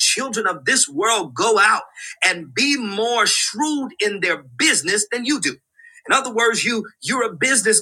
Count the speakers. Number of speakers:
one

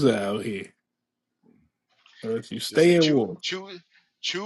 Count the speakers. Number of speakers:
two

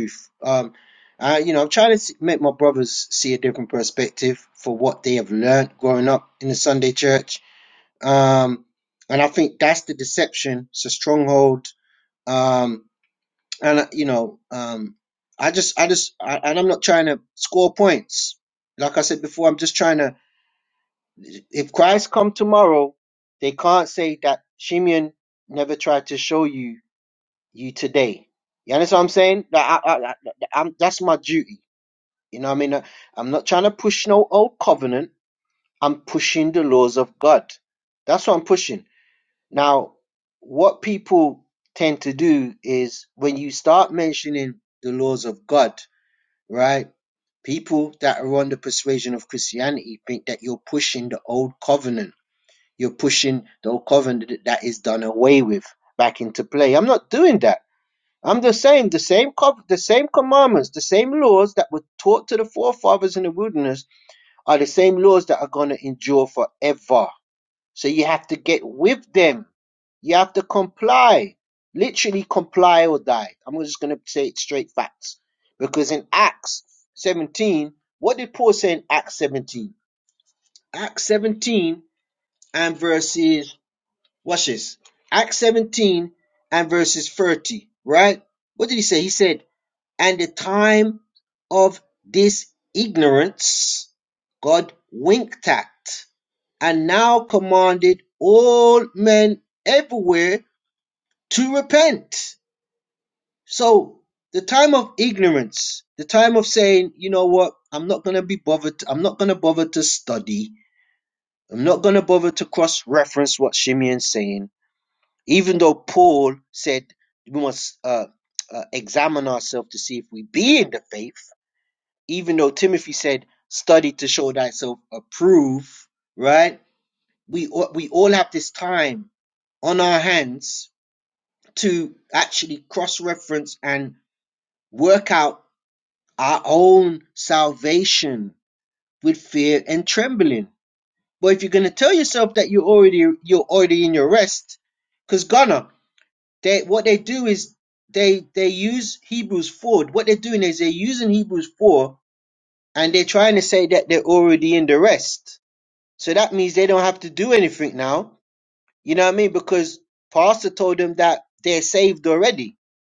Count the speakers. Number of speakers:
one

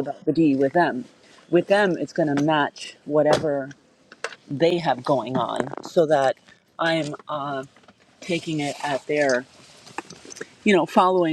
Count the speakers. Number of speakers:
one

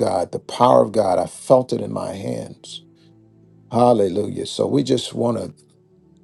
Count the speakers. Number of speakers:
one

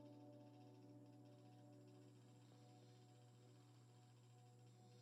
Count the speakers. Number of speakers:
zero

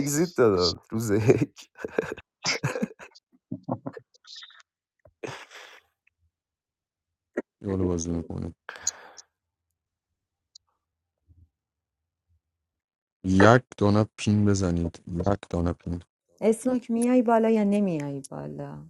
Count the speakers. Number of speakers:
three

